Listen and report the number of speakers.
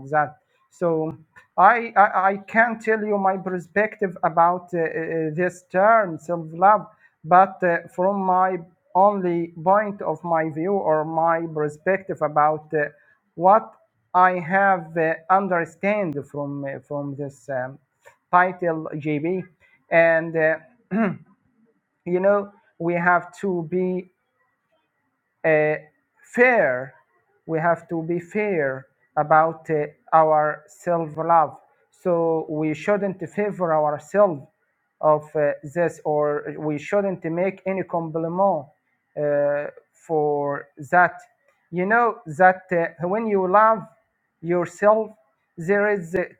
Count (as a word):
one